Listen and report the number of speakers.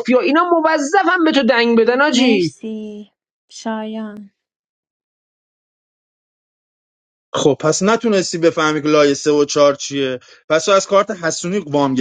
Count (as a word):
three